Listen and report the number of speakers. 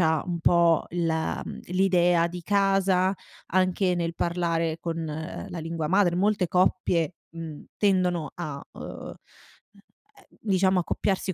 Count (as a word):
one